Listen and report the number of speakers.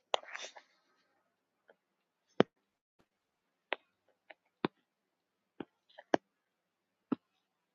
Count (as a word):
zero